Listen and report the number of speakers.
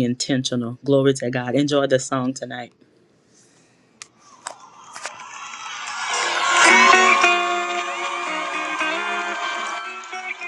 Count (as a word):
one